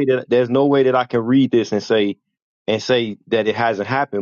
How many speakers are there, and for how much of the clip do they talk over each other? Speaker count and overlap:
1, no overlap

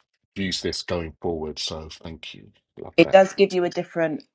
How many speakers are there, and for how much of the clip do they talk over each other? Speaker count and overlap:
2, about 4%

